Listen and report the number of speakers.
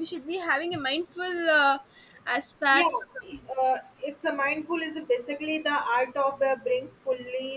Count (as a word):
two